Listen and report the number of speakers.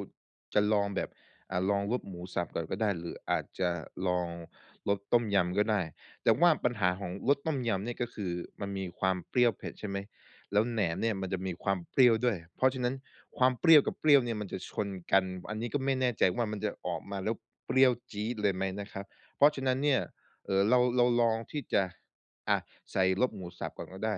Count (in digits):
1